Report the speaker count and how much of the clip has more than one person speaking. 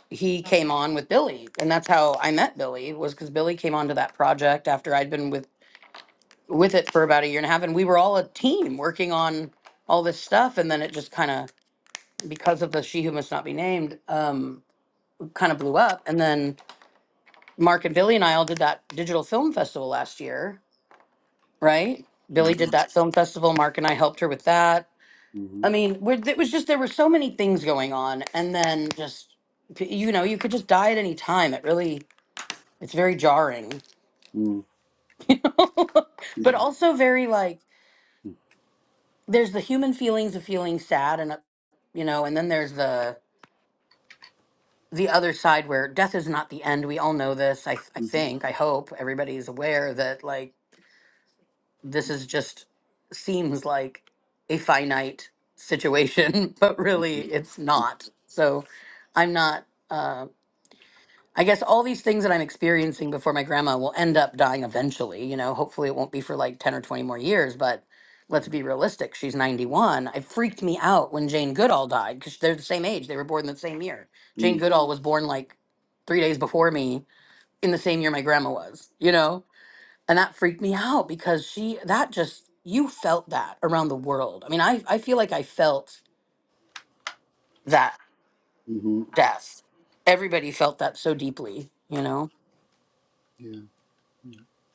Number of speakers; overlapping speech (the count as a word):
two, about 1%